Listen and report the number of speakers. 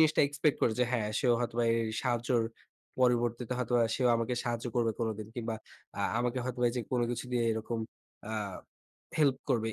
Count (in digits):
1